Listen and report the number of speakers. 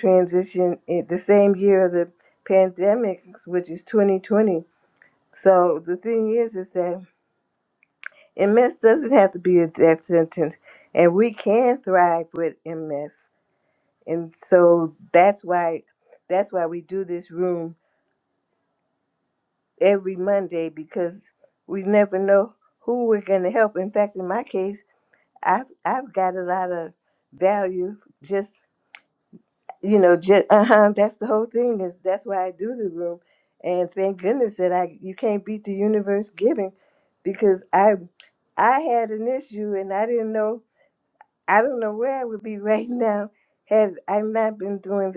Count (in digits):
1